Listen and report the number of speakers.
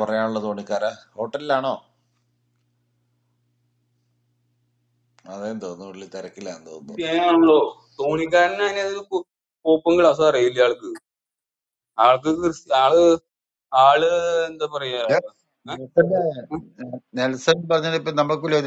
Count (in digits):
3